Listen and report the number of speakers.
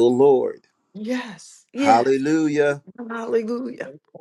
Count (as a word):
two